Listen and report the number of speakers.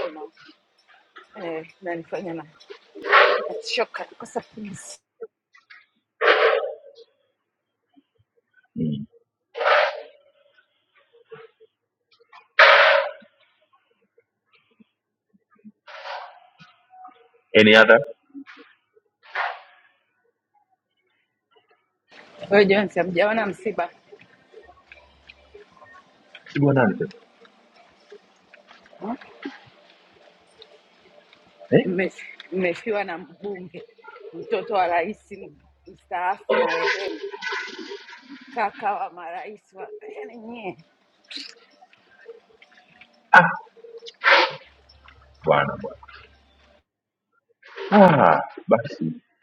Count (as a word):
two